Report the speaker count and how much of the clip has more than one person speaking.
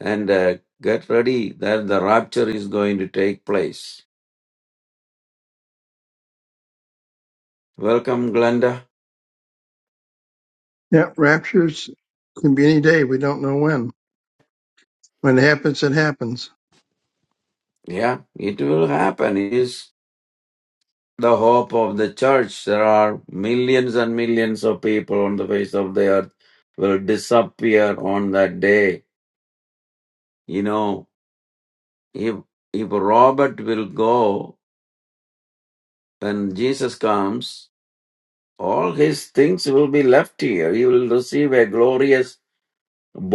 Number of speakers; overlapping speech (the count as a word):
two, no overlap